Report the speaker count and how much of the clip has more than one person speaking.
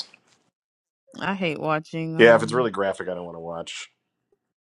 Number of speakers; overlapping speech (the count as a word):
two, about 9%